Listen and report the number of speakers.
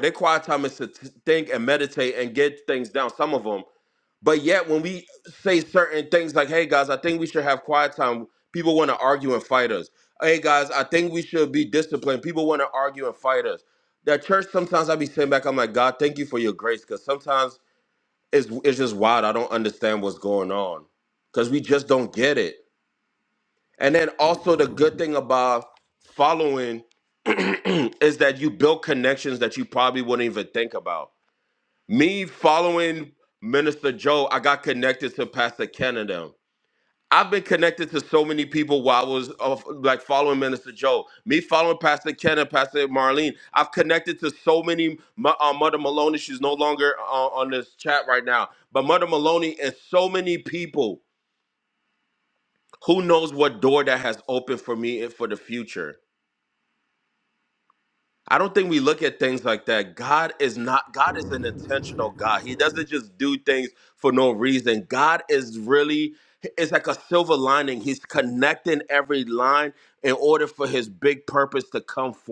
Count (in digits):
1